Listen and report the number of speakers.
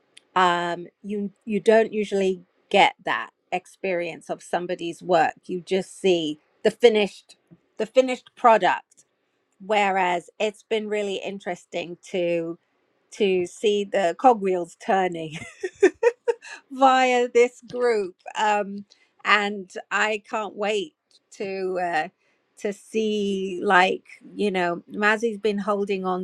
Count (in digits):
1